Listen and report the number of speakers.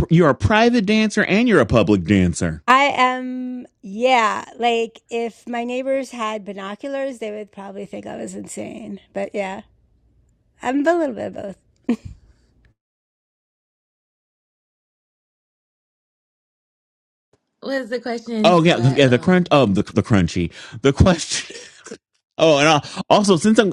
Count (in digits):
3